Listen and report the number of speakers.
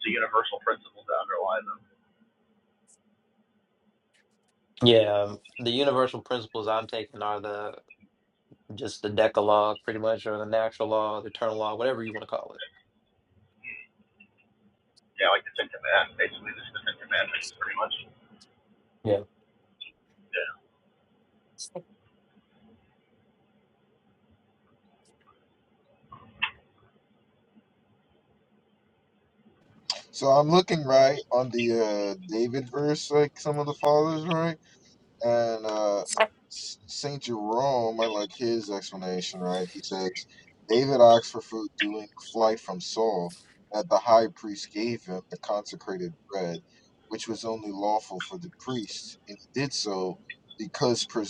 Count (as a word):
three